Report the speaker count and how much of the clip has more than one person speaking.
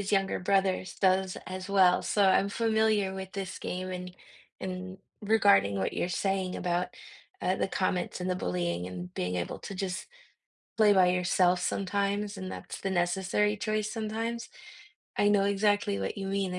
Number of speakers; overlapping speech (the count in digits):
1, no overlap